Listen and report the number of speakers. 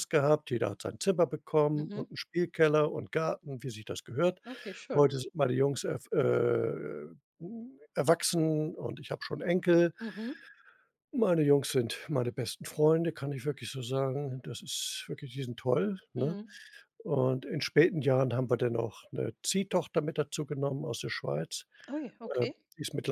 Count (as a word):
two